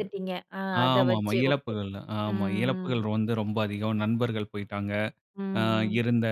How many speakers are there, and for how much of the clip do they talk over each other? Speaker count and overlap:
2, about 22%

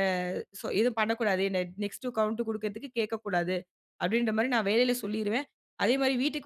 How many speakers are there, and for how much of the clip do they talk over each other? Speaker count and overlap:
1, no overlap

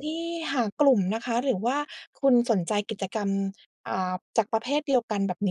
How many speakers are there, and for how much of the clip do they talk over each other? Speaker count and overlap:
1, no overlap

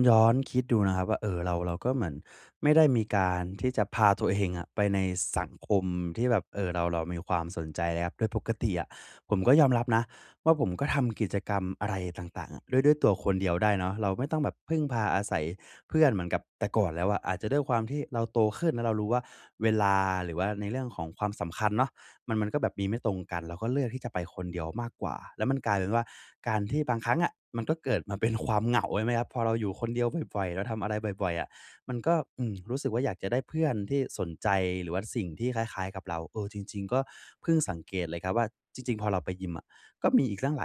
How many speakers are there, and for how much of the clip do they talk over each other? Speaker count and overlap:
1, no overlap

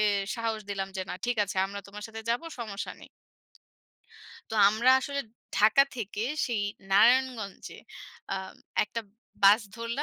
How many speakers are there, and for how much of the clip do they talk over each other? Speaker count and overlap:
1, no overlap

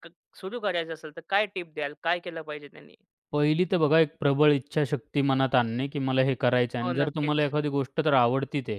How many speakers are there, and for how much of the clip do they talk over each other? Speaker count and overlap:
2, about 8%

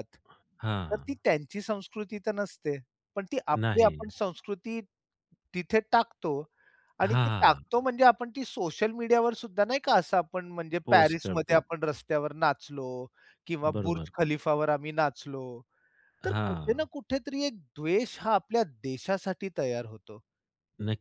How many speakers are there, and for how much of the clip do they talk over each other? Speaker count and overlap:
2, about 13%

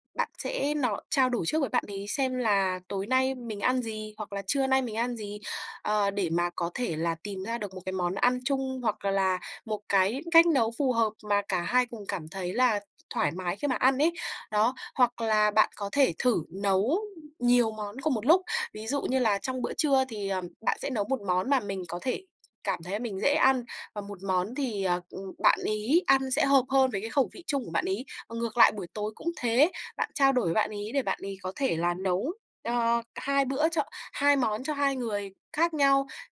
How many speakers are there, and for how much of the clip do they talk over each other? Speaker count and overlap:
1, no overlap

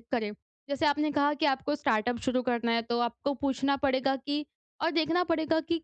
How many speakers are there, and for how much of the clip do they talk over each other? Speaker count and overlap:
1, no overlap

